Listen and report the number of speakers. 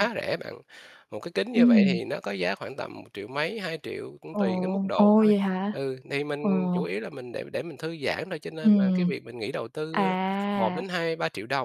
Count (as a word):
two